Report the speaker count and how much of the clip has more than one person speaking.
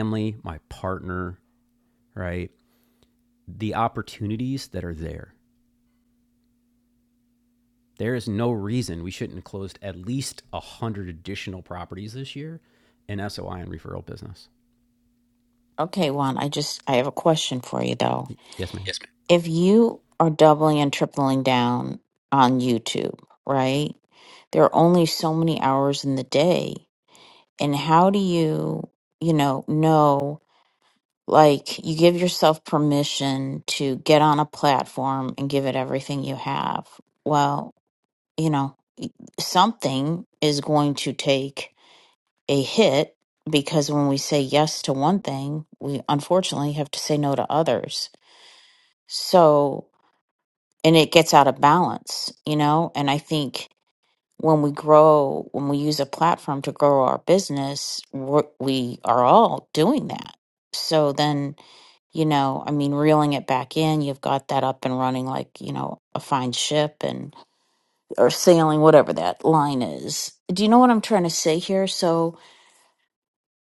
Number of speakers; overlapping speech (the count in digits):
2, no overlap